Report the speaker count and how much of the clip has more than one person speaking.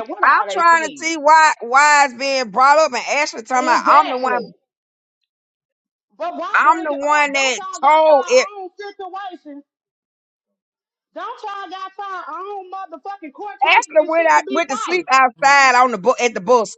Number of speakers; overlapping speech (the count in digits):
2, about 30%